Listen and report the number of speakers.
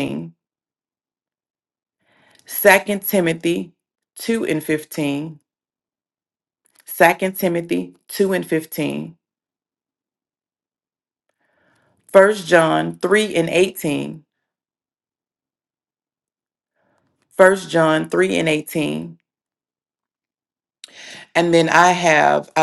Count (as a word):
one